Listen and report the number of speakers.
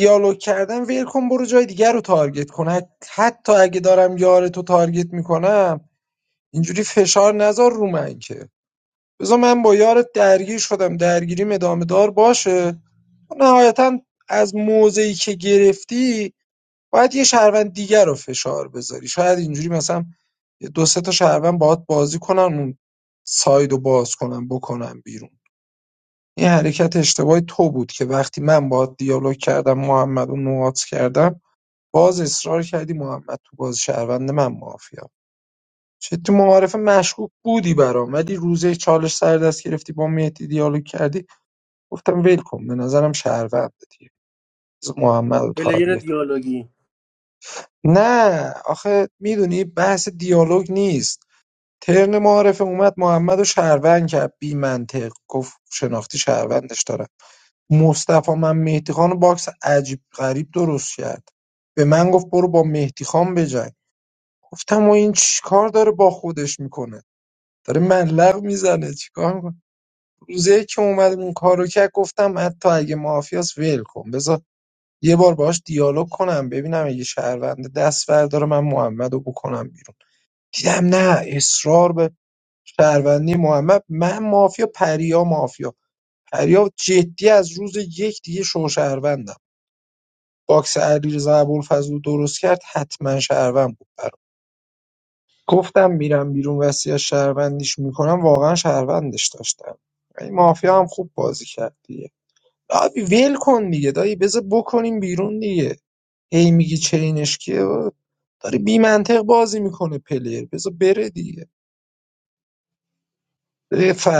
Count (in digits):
2